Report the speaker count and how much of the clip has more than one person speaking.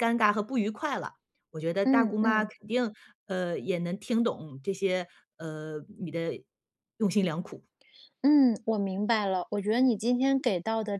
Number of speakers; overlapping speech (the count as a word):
two, about 5%